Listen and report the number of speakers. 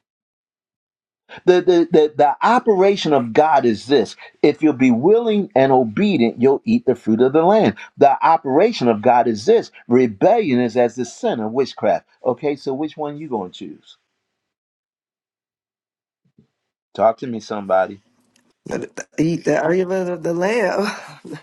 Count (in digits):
2